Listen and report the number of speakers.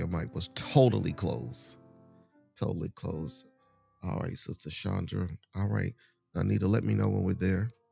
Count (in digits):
1